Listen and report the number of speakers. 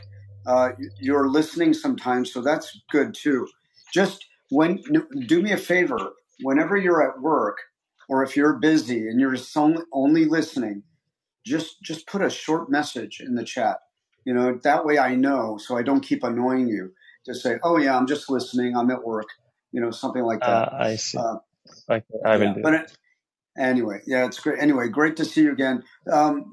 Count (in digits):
2